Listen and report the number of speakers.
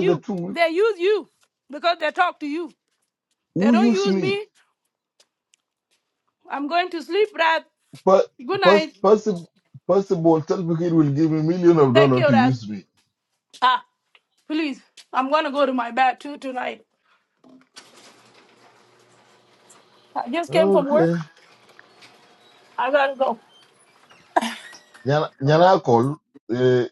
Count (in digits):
2